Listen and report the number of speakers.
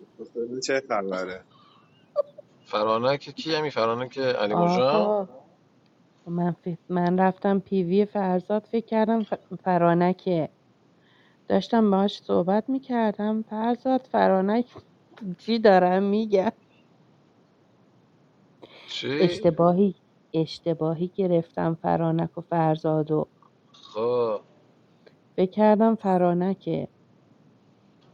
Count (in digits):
3